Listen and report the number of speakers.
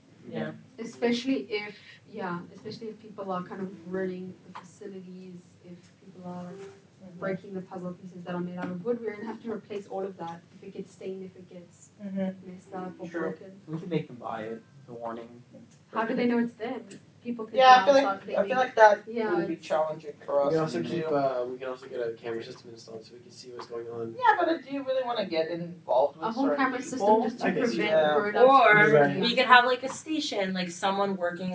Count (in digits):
5